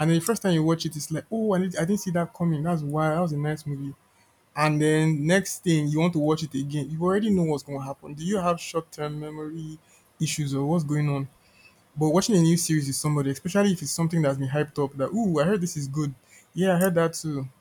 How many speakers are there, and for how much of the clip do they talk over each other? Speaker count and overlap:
1, no overlap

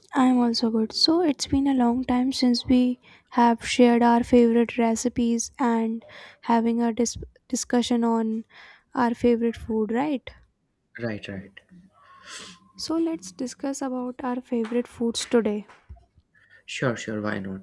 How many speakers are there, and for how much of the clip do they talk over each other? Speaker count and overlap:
2, no overlap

